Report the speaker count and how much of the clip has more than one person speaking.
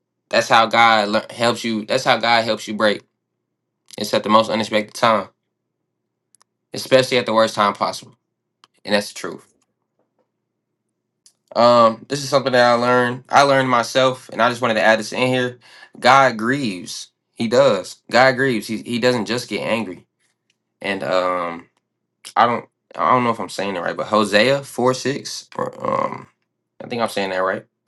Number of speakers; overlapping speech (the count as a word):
one, no overlap